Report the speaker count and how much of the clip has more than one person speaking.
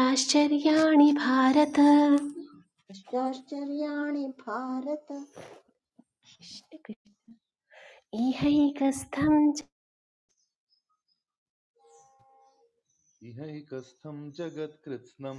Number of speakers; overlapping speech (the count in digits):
3, no overlap